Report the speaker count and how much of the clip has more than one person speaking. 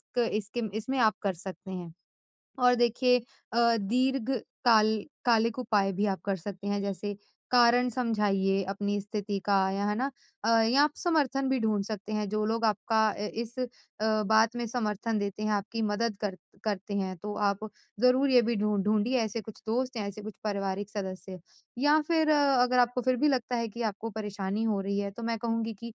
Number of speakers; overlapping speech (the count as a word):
one, no overlap